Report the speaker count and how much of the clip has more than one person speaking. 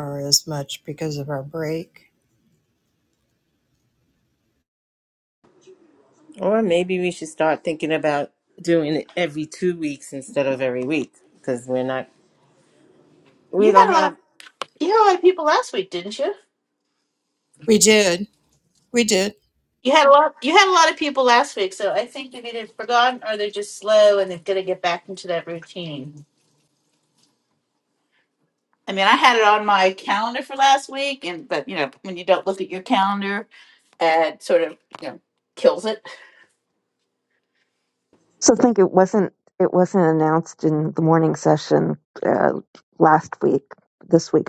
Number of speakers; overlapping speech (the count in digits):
4, about 1%